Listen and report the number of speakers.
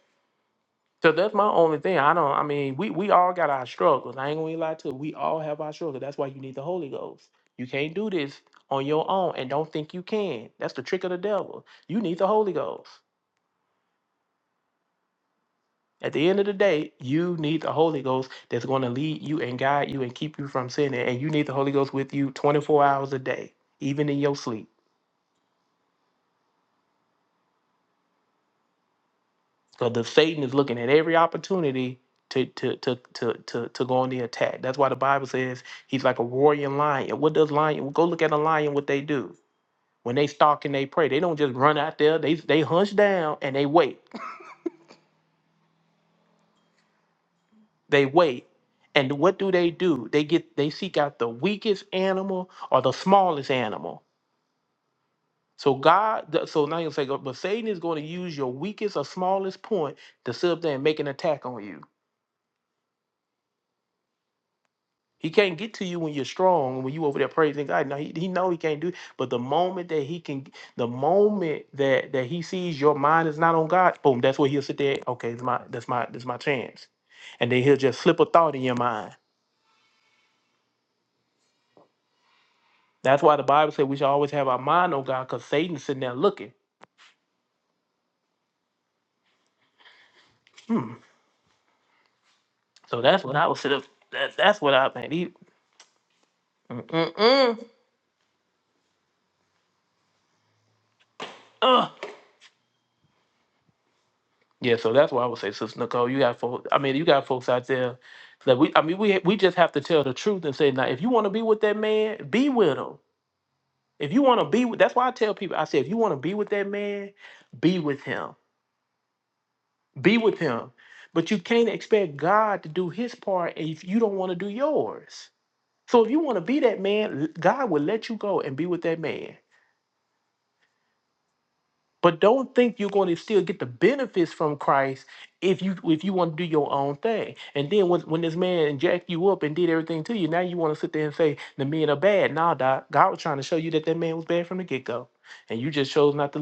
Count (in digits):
1